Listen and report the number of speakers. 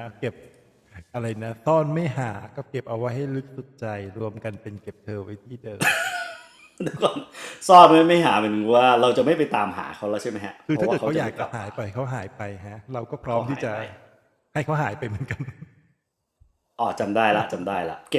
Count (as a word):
two